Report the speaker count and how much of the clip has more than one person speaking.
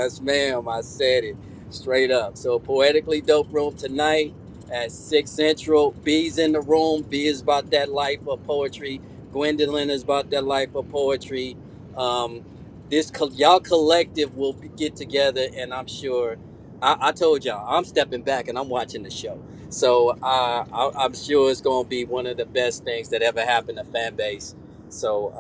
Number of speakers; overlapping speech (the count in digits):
1, no overlap